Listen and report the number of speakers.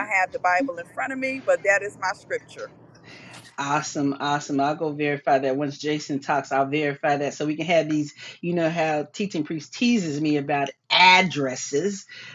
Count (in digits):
2